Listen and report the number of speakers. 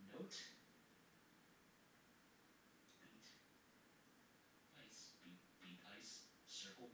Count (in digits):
1